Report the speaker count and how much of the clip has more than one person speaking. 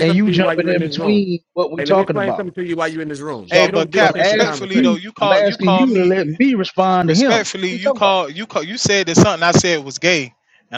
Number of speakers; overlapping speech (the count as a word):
three, about 52%